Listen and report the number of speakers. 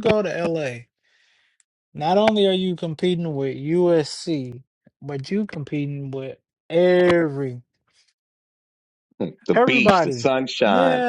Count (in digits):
2